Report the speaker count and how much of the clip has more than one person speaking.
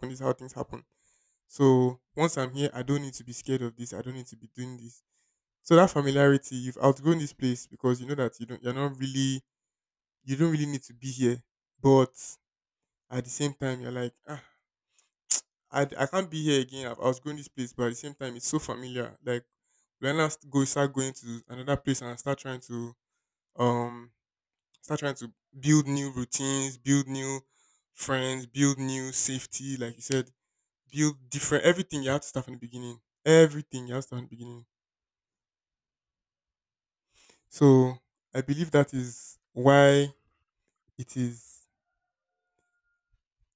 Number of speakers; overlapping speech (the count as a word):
one, no overlap